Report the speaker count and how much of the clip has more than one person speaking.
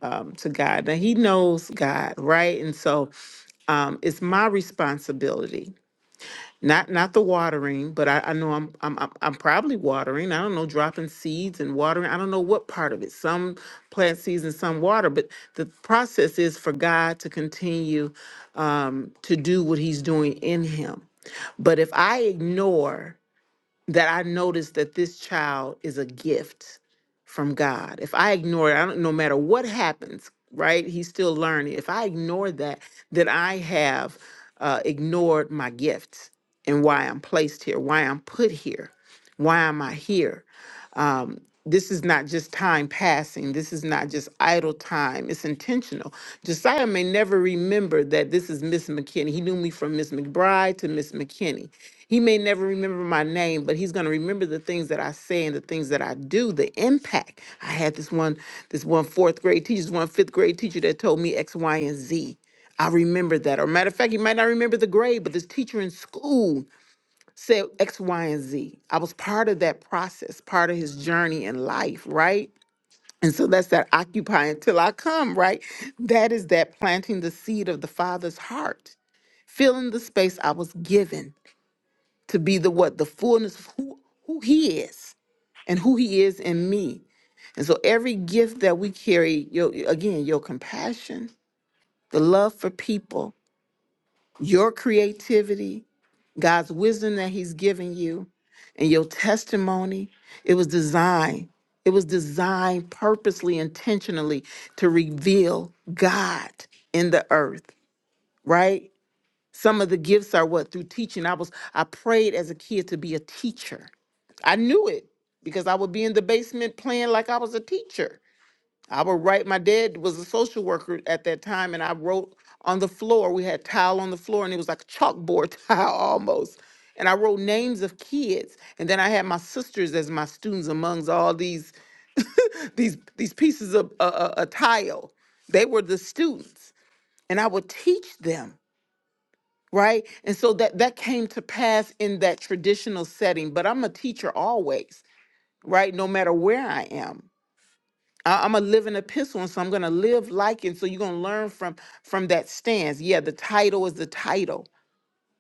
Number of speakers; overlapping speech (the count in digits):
1, no overlap